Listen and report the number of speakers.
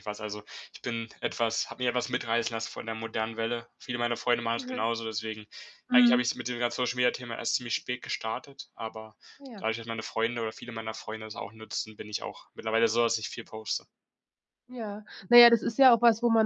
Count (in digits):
2